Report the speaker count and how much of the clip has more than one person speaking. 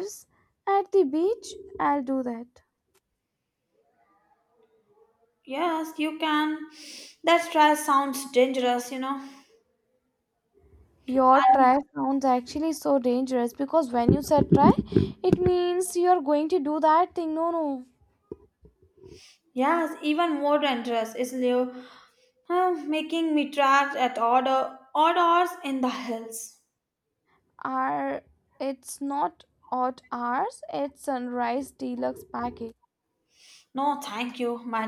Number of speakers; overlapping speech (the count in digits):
2, about 1%